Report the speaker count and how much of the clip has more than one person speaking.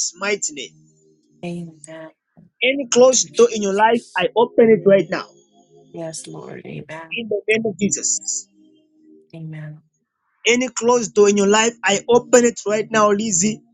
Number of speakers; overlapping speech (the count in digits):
2, about 6%